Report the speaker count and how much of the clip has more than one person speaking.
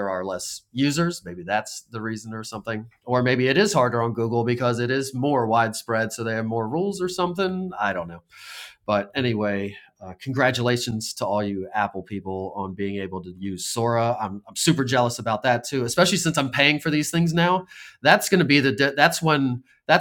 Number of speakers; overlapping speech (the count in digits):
1, no overlap